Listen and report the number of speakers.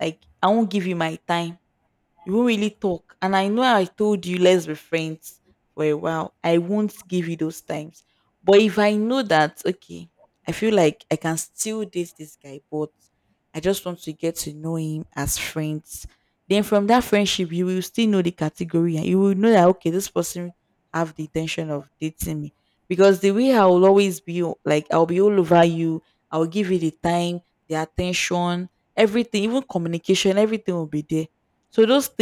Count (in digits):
1